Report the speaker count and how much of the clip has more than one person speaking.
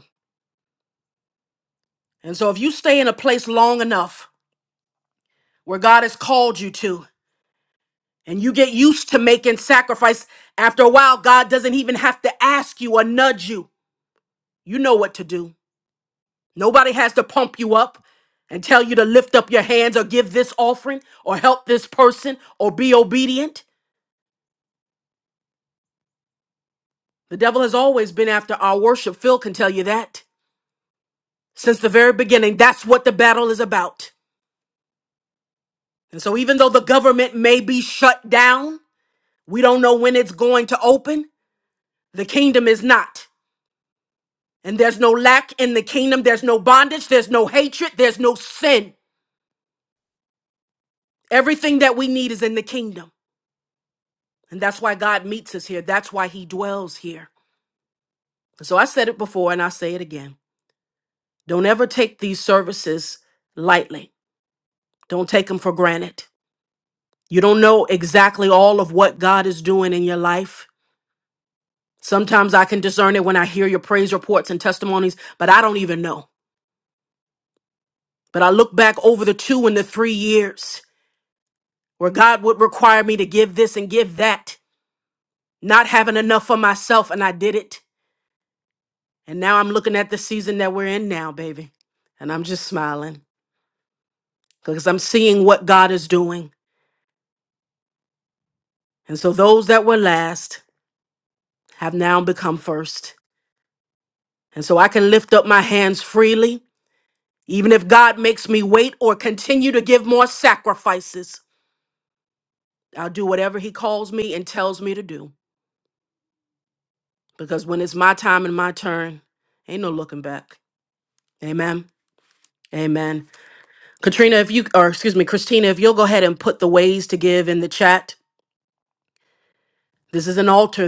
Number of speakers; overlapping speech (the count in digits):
1, no overlap